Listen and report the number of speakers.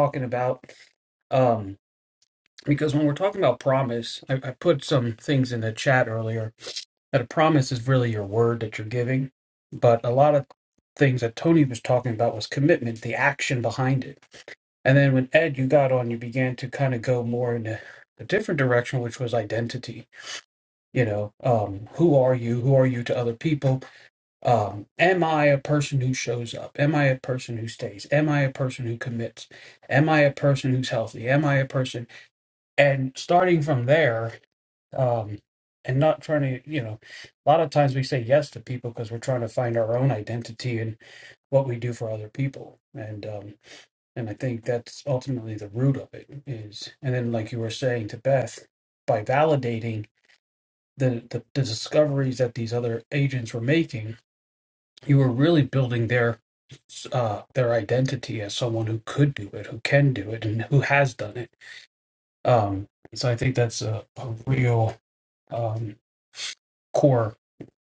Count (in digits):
1